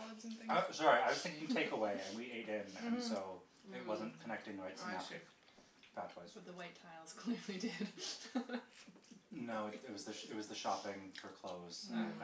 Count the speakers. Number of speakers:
three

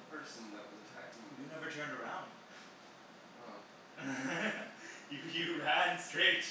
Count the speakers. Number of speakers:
two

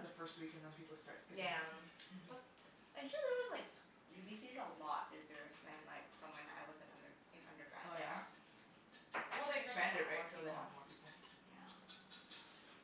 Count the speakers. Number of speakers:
two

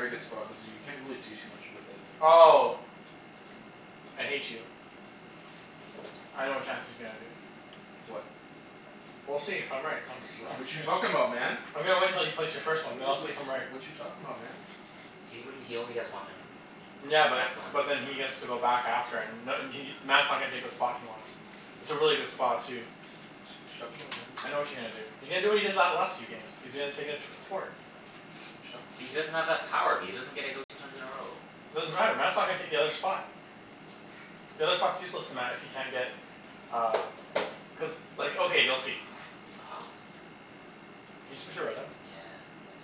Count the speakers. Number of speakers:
three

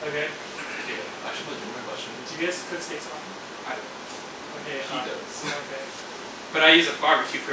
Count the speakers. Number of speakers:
three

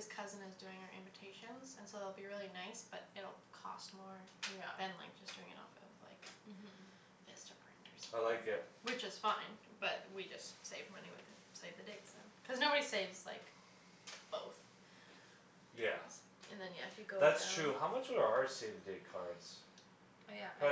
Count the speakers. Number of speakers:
three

